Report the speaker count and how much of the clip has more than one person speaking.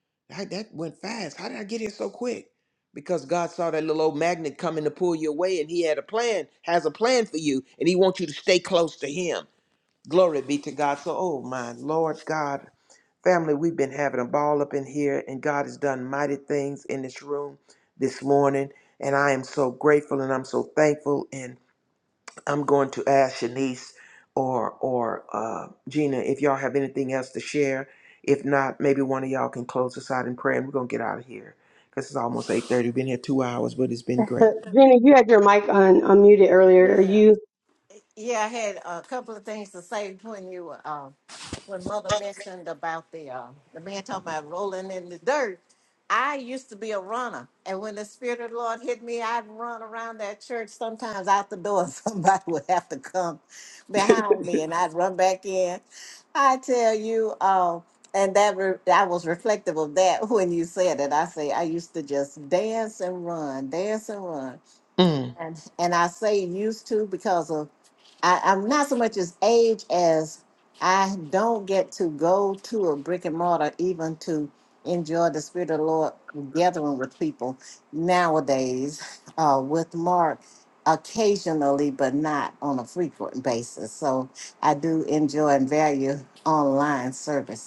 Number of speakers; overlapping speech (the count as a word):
three, under 1%